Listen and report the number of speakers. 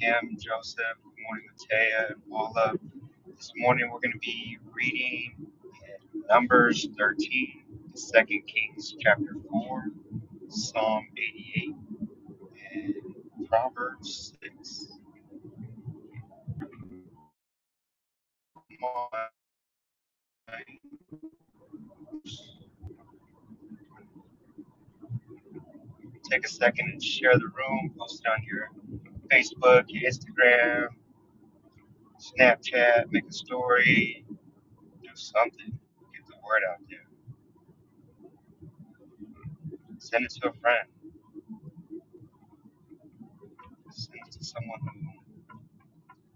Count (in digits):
1